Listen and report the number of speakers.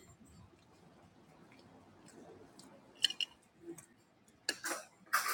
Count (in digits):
0